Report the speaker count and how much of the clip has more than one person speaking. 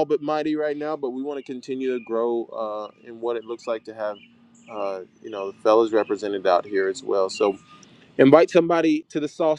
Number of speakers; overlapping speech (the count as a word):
one, no overlap